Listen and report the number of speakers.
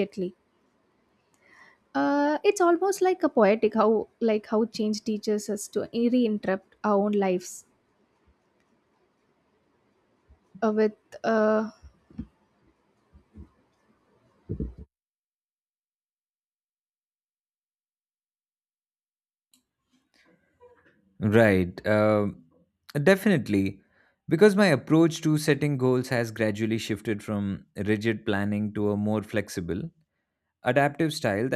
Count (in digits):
2